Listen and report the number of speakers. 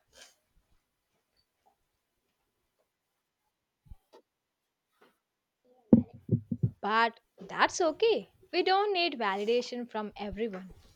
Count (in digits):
1